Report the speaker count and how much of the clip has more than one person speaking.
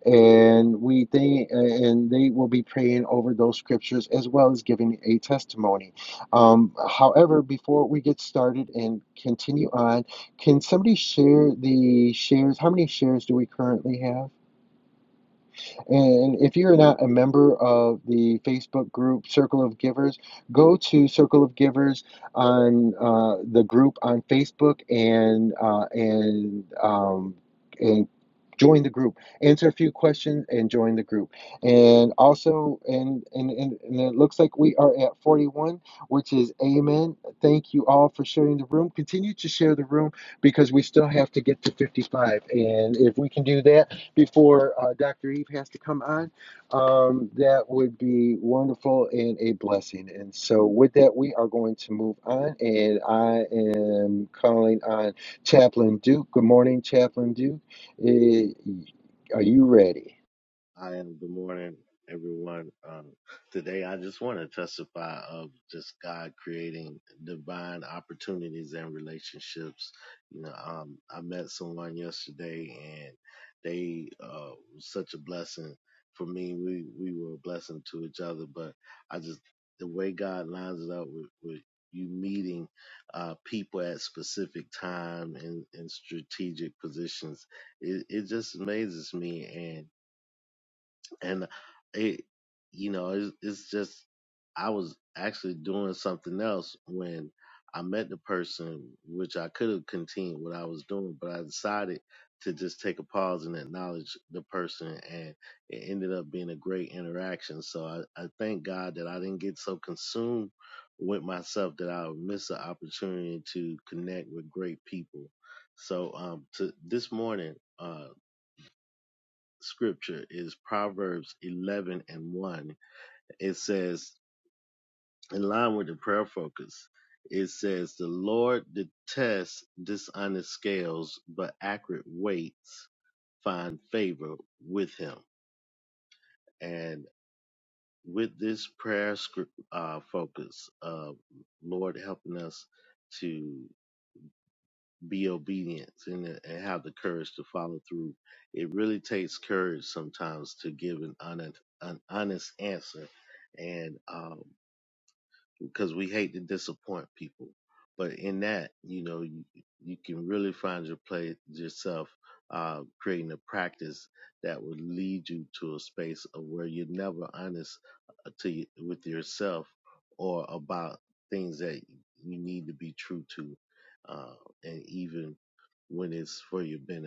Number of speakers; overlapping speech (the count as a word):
two, no overlap